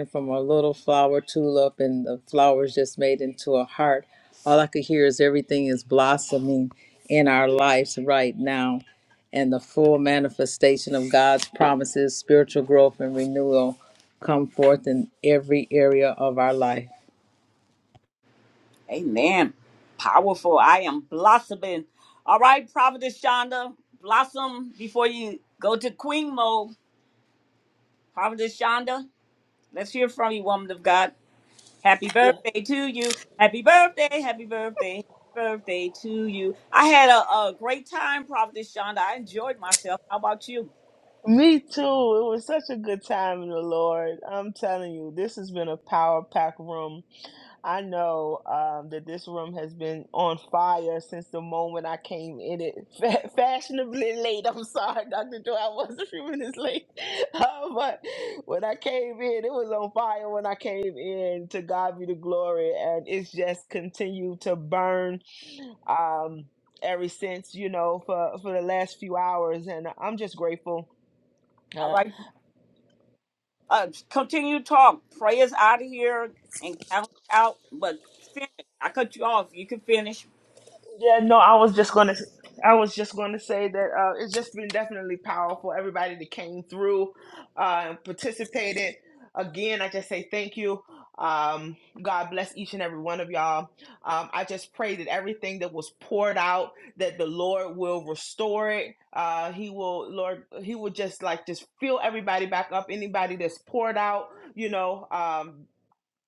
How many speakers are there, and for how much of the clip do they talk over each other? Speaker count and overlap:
3, under 1%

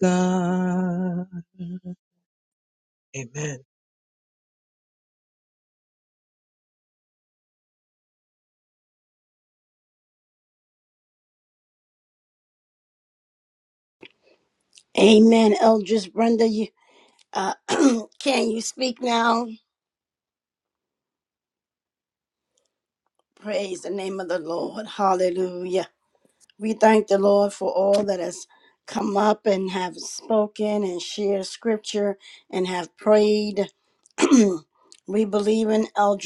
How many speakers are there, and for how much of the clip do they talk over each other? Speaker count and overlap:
2, no overlap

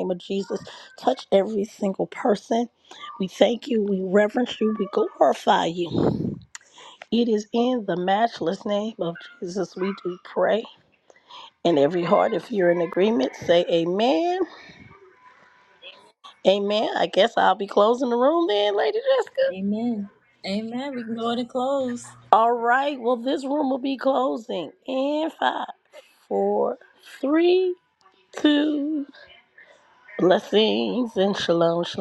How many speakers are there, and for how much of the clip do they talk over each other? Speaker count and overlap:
2, no overlap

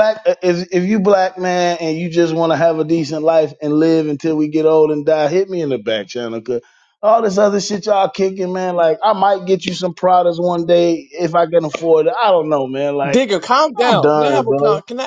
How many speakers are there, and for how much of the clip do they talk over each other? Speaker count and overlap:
2, about 8%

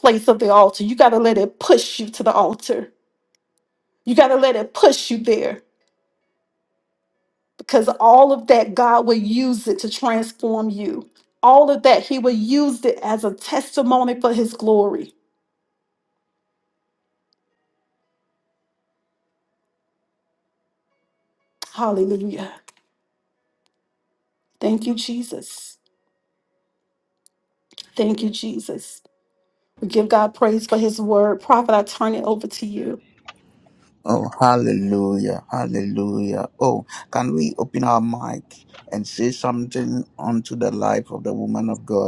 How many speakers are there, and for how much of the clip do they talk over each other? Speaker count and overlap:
2, no overlap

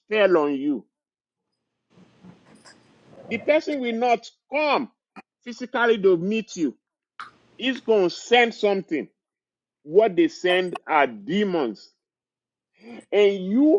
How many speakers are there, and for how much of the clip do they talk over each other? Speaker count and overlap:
1, no overlap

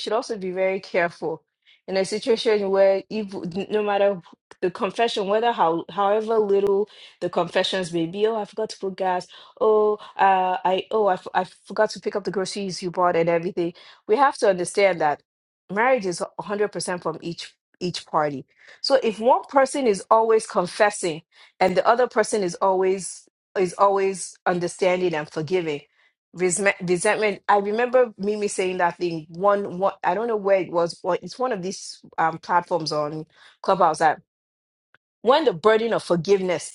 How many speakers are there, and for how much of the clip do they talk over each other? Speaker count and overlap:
1, no overlap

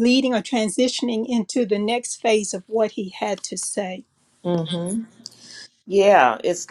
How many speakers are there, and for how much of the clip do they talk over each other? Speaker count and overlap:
2, no overlap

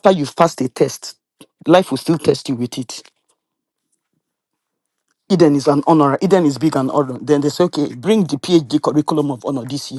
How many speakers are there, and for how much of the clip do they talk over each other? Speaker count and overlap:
1, no overlap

